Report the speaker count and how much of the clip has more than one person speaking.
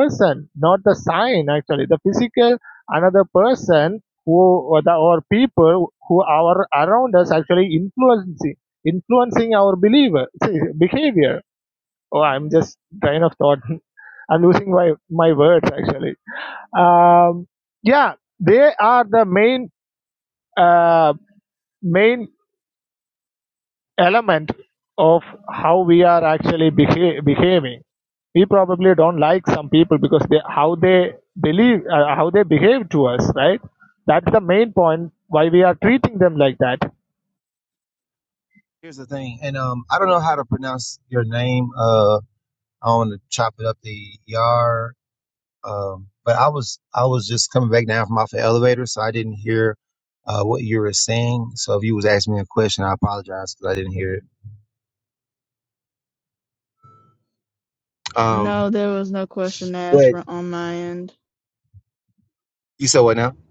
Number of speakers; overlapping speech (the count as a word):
three, about 1%